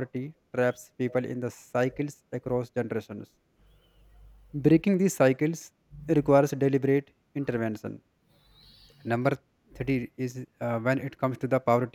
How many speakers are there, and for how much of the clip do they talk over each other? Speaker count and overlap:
one, no overlap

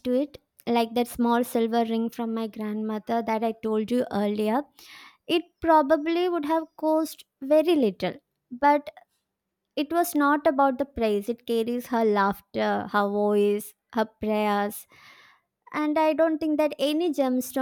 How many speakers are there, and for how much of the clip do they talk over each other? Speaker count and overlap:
one, no overlap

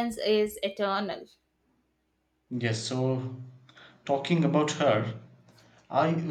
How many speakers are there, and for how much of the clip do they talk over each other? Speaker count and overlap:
two, no overlap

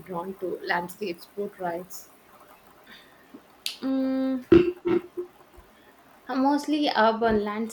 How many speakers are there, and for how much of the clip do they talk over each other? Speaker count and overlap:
two, no overlap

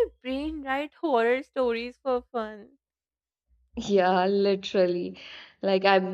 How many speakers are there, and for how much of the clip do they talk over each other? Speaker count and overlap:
two, no overlap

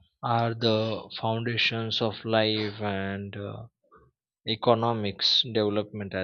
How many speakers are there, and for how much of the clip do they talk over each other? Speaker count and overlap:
one, no overlap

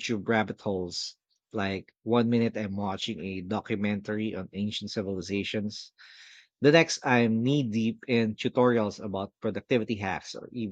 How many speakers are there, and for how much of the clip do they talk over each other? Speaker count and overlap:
one, no overlap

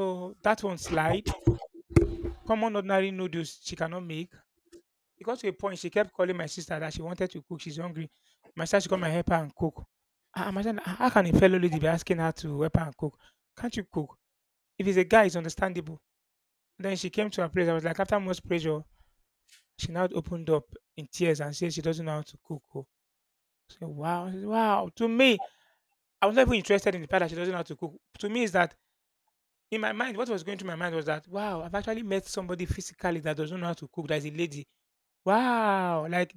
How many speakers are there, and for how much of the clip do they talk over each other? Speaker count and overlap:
one, no overlap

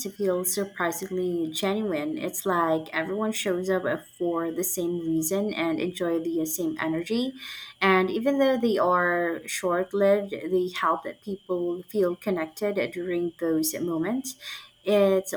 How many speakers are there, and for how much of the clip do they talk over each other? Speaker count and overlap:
one, no overlap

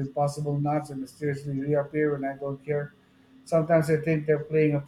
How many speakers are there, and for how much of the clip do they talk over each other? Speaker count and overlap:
one, no overlap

